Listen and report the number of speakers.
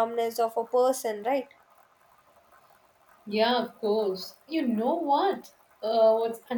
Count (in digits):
2